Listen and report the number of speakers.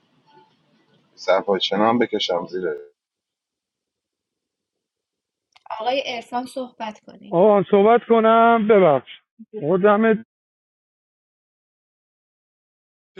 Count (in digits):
3